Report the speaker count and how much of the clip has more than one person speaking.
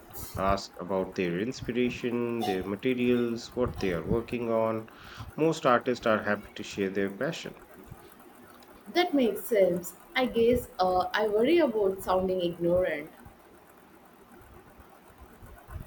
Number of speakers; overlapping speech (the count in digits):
2, no overlap